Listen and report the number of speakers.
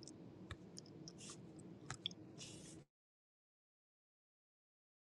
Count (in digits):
0